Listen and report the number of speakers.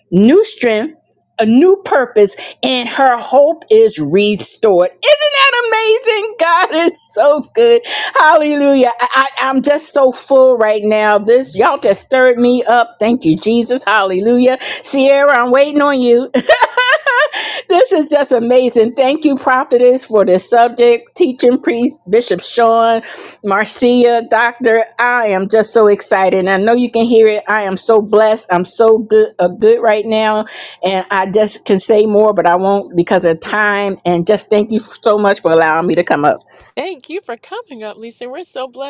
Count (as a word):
two